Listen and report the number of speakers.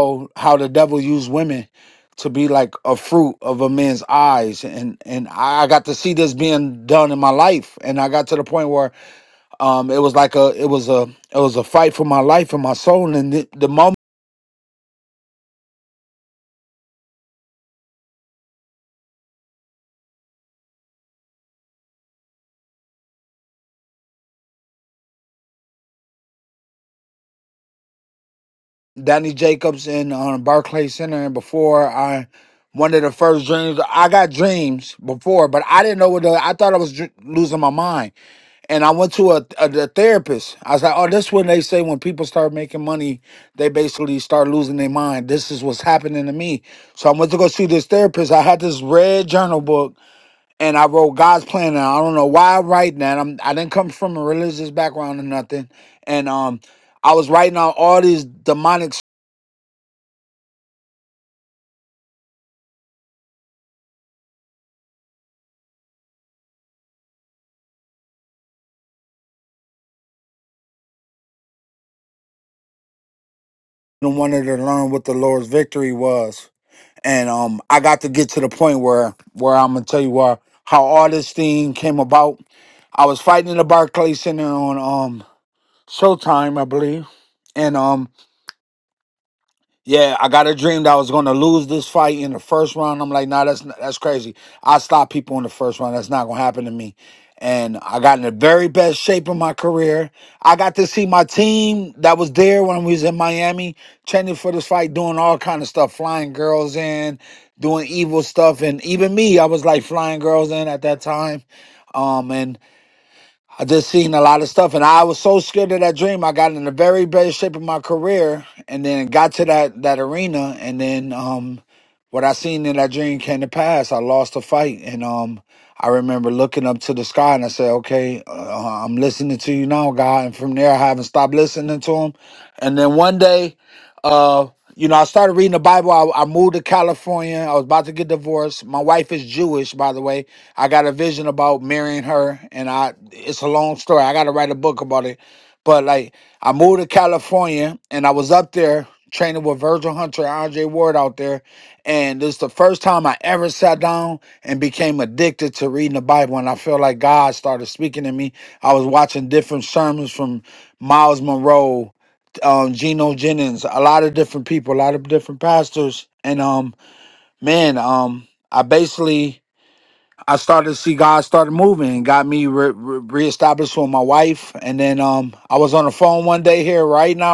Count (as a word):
one